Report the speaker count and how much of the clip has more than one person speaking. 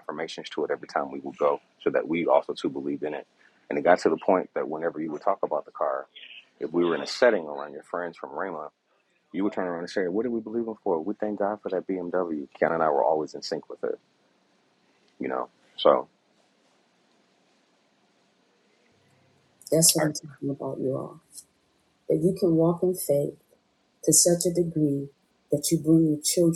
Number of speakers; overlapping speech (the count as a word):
two, under 1%